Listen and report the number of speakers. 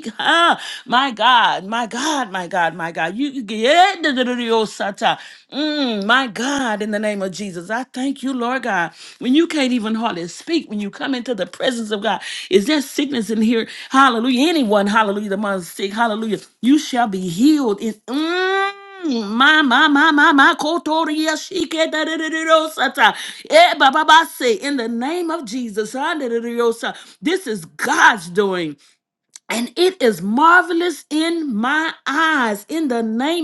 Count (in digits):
1